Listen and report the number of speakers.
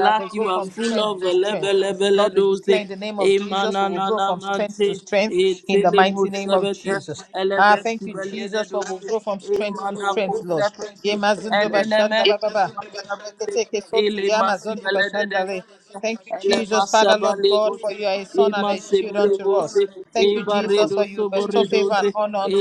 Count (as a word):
two